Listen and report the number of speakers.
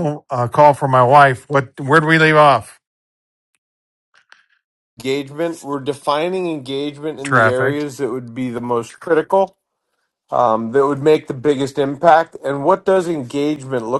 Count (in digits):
2